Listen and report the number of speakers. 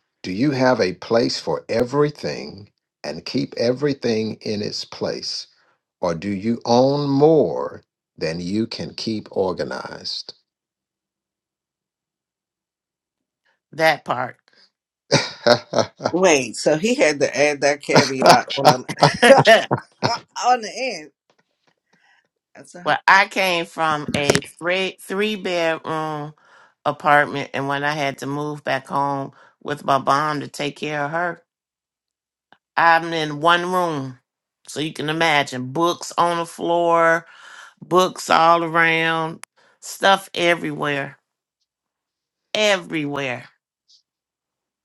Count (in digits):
3